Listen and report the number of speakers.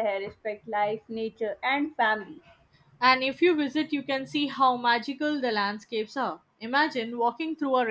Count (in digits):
2